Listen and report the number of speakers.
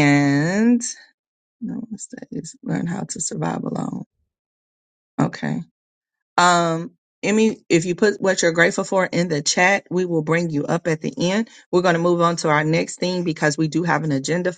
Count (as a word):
one